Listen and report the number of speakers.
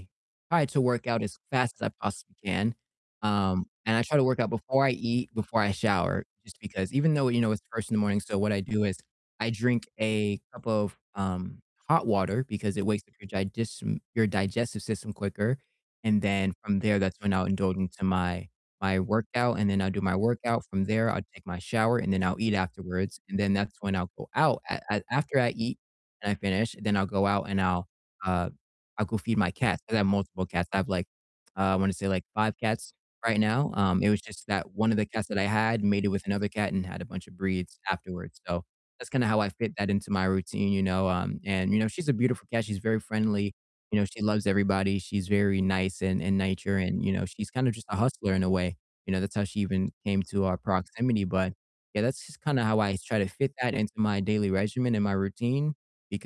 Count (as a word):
one